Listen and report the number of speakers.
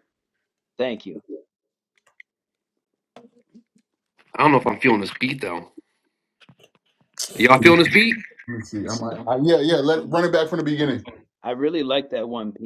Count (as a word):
three